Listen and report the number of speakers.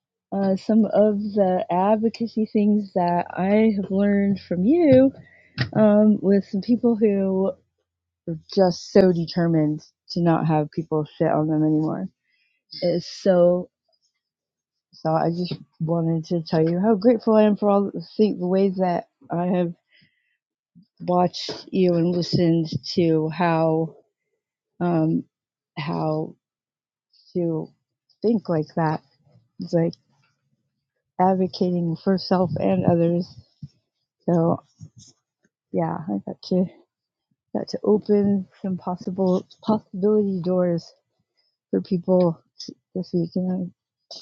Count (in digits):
1